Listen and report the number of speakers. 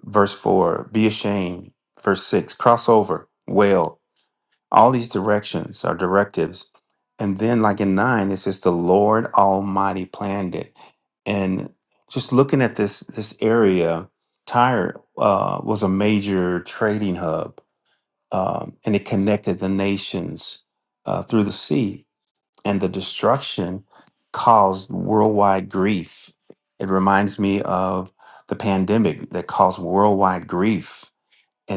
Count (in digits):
1